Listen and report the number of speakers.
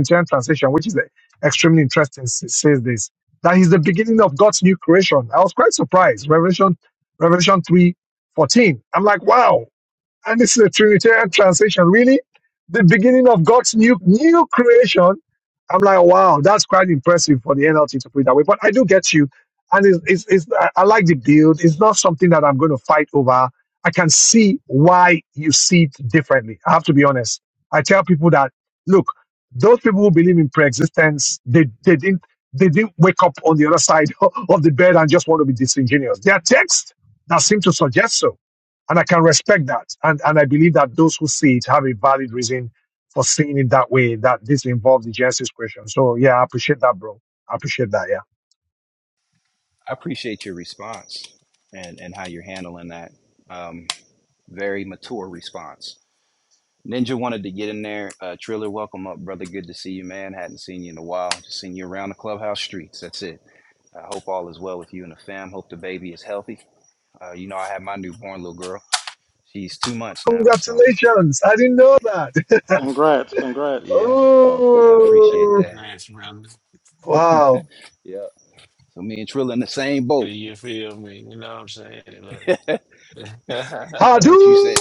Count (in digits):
4